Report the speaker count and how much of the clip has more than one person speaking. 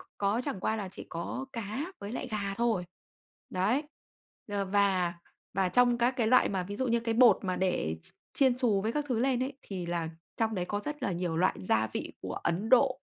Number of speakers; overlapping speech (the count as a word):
one, no overlap